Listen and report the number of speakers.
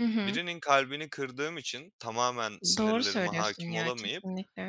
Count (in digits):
2